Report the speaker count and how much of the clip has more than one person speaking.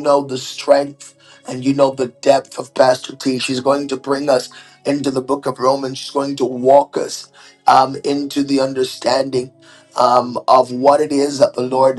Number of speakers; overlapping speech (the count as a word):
one, no overlap